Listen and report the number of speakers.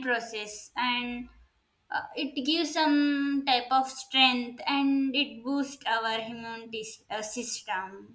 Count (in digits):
1